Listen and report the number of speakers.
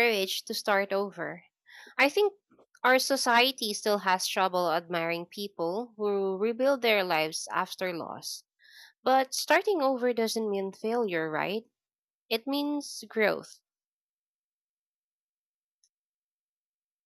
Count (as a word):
one